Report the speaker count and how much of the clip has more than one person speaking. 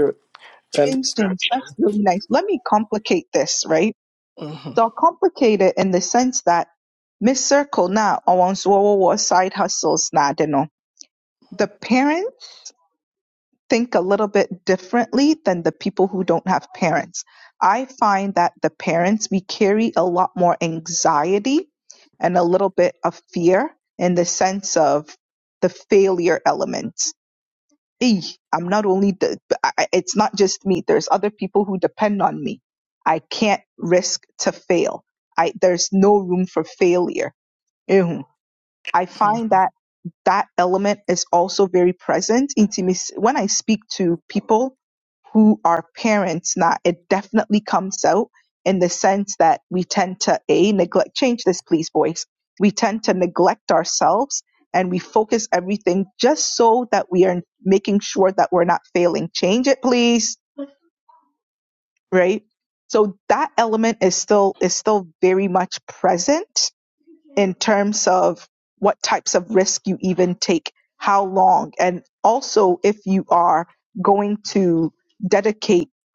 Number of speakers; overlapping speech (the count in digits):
2, about 1%